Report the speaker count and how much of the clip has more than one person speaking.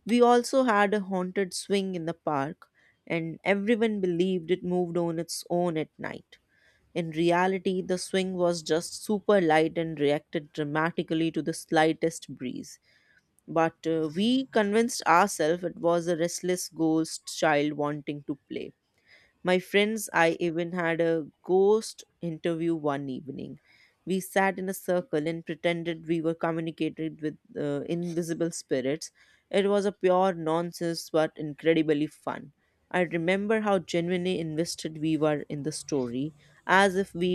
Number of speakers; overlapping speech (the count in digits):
1, no overlap